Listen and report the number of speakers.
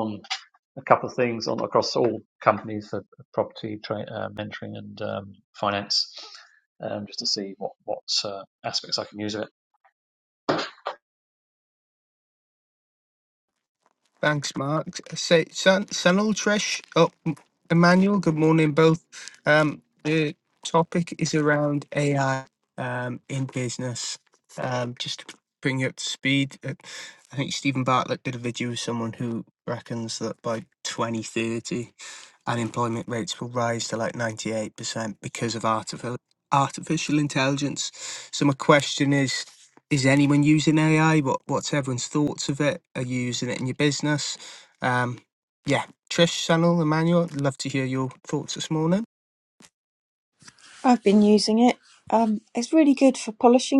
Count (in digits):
3